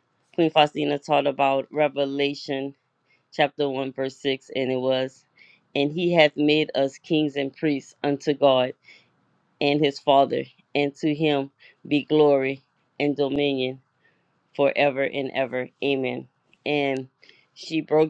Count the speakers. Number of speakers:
1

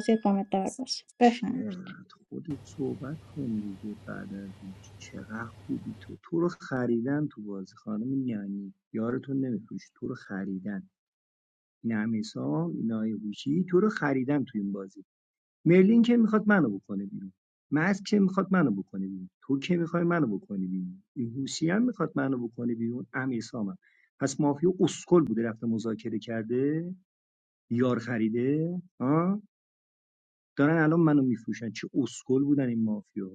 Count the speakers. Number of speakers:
2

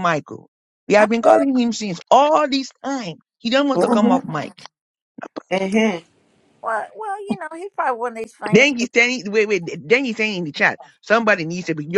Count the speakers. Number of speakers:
3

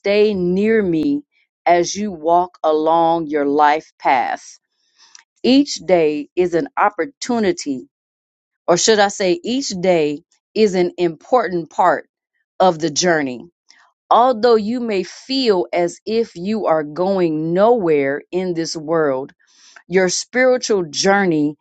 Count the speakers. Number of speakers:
1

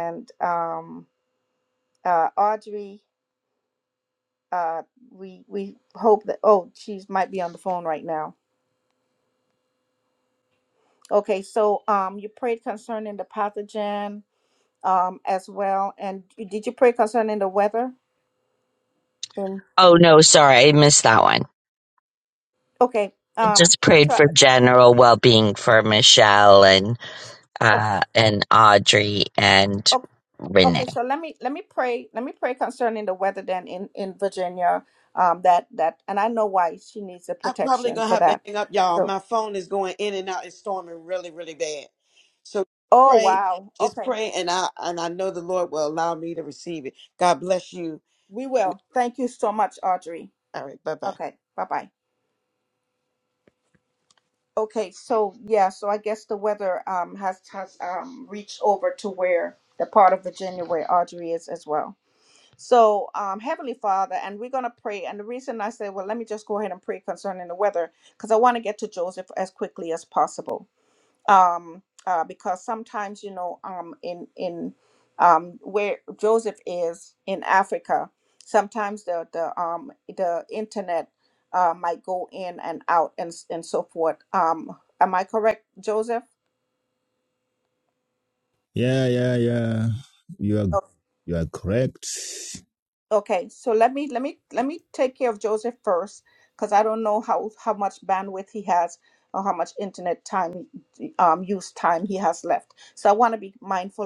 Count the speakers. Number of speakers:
4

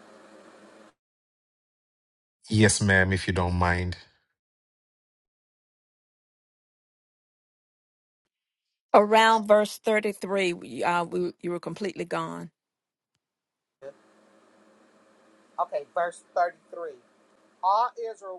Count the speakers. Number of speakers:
3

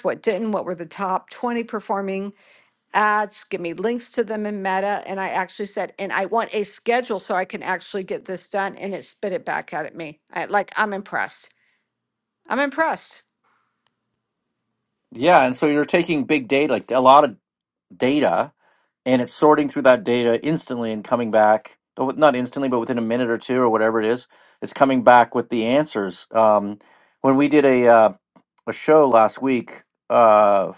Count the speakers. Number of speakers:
2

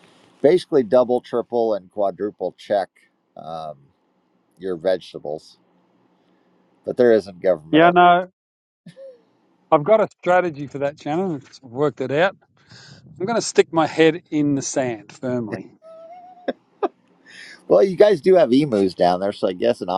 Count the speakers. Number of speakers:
2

